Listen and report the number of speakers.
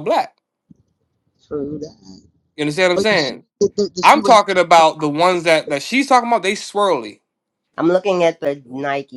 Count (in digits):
3